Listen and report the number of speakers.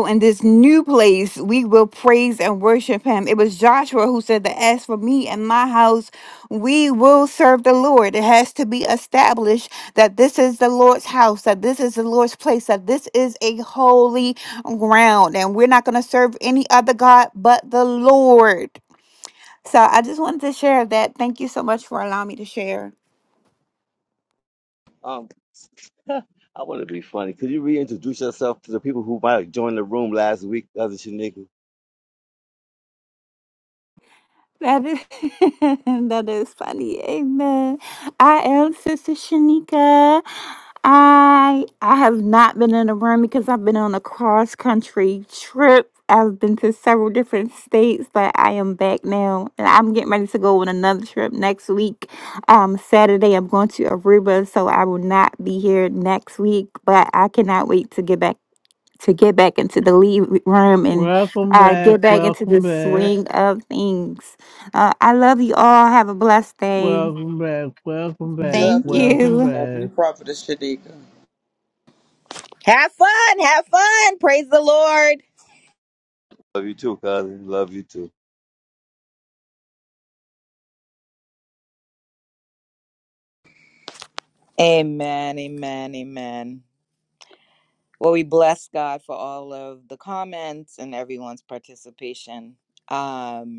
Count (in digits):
5